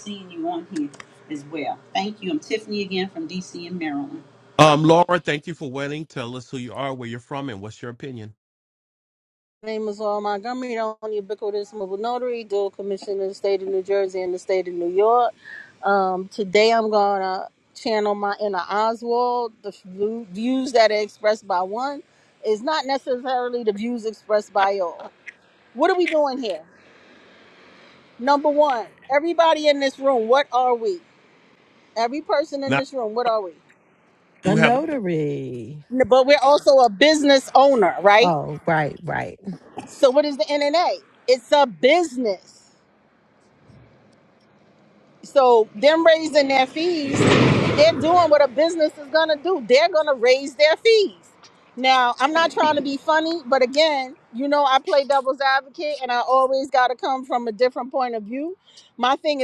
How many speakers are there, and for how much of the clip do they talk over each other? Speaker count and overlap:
four, about 1%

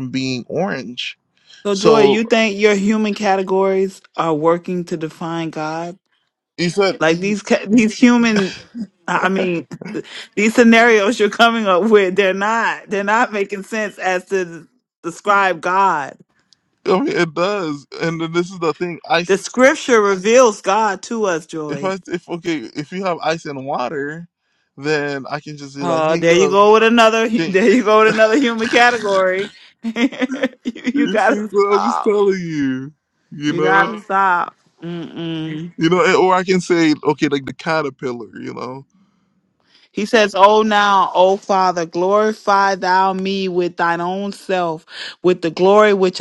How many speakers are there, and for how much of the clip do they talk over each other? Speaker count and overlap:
two, about 7%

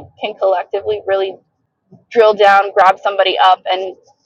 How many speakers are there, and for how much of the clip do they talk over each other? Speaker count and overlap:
one, no overlap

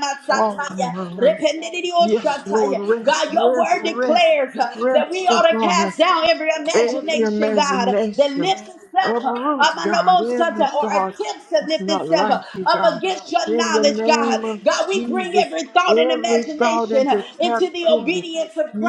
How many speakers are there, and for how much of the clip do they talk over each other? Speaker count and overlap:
two, about 66%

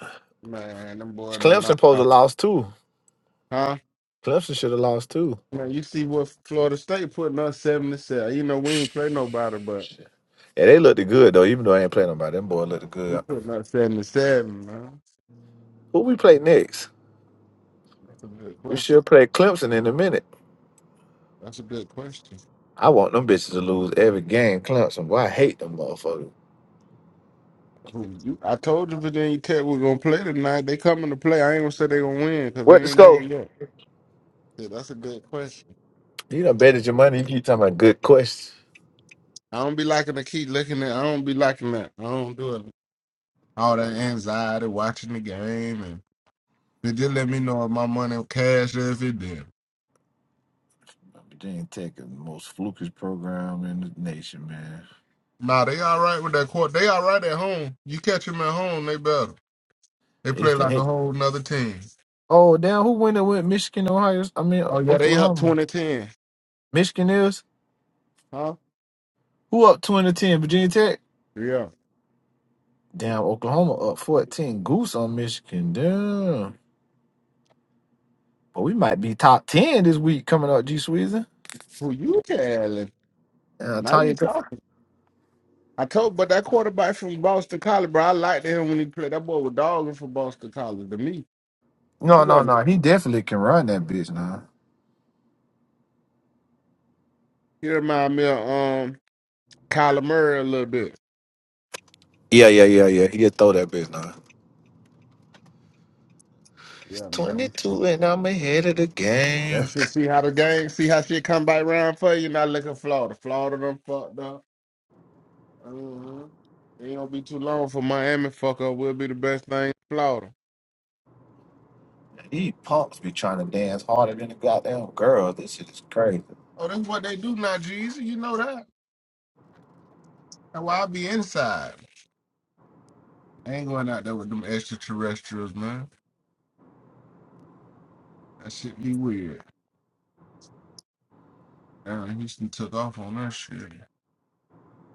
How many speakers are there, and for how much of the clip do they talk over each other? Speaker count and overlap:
two, about 3%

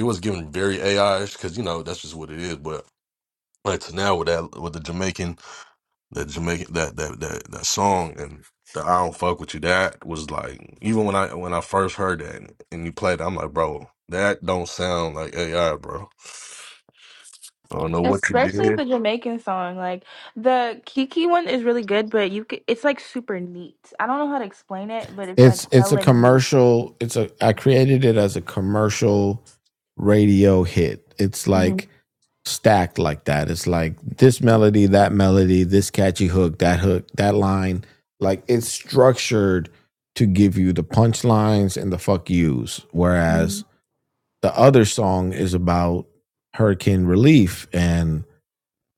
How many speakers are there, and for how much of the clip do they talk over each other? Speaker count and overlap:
three, about 4%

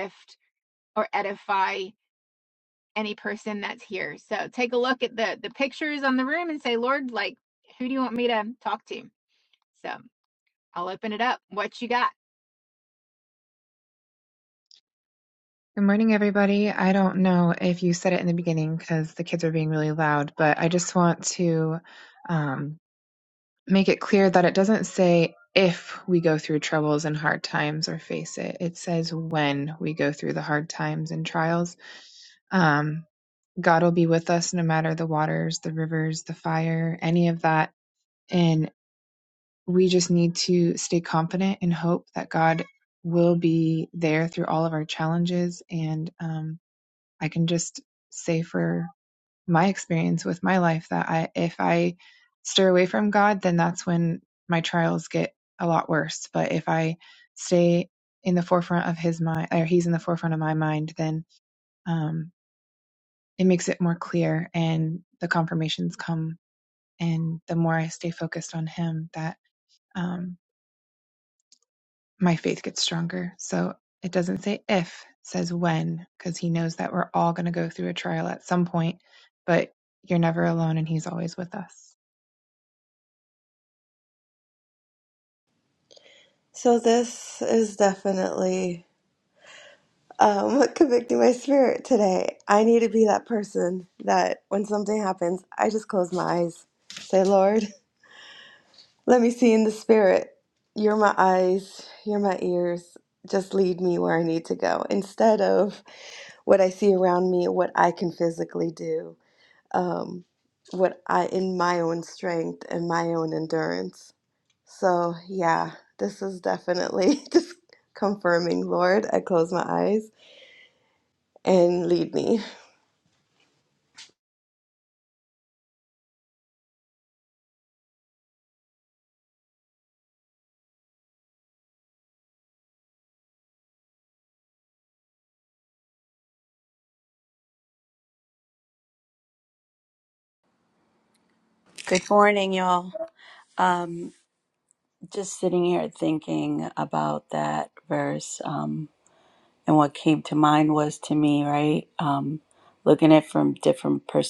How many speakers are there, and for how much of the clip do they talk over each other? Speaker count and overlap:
four, no overlap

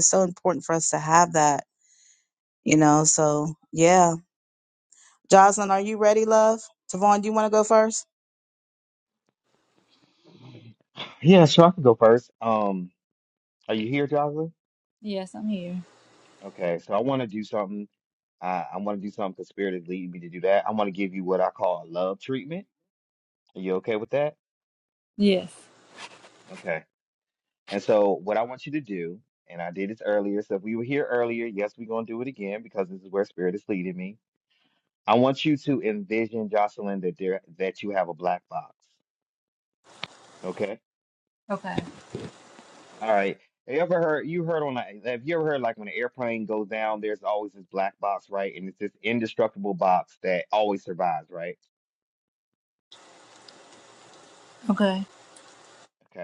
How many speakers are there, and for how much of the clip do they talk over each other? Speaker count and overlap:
three, no overlap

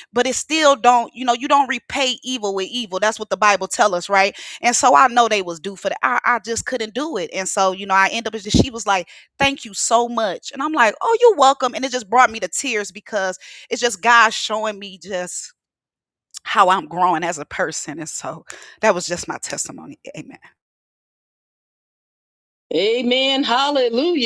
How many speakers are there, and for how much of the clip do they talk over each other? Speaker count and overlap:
two, no overlap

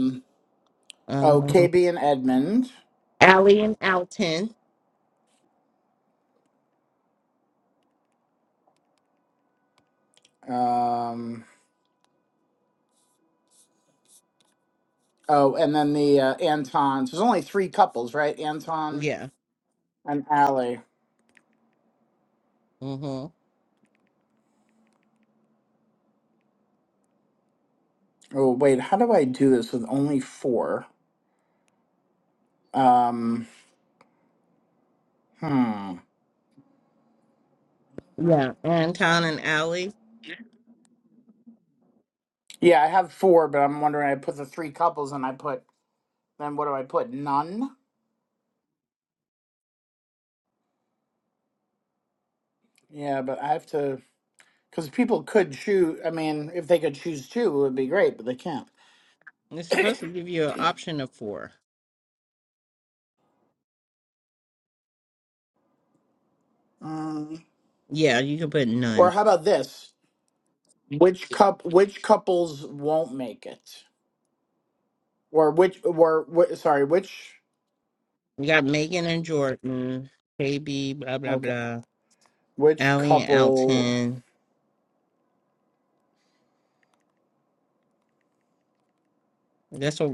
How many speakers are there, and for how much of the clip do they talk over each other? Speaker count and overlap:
two, about 3%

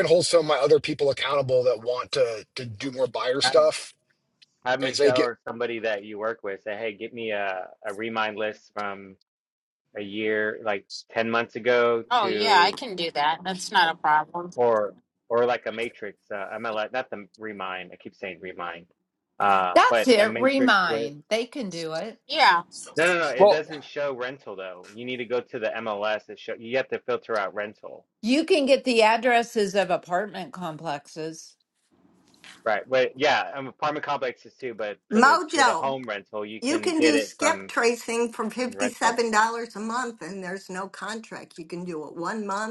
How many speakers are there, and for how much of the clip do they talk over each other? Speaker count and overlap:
five, about 13%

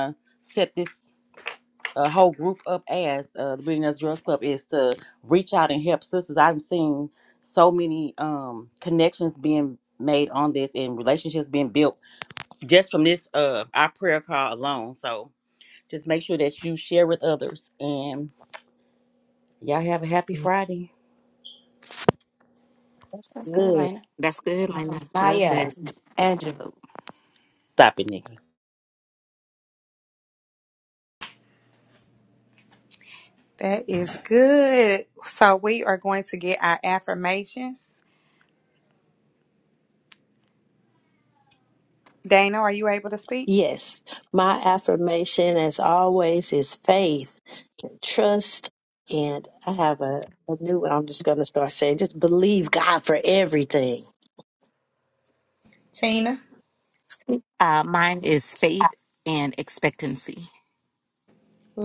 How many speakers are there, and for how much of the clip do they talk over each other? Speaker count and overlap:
five, about 2%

